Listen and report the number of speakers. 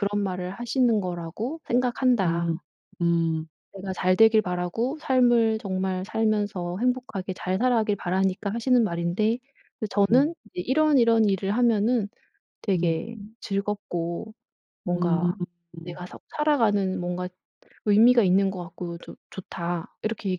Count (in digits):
2